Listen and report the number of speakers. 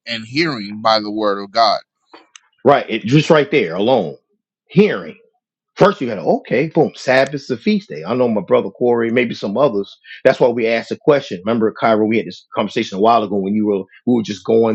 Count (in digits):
2